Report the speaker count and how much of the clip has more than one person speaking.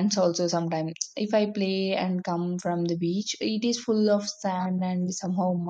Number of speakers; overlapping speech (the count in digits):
1, no overlap